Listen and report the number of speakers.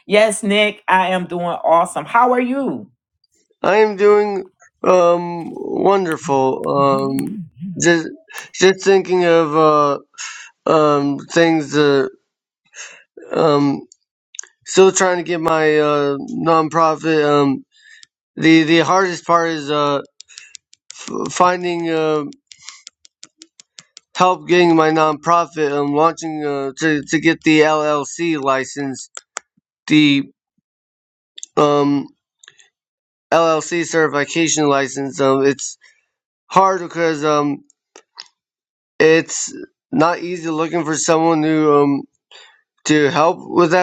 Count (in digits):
2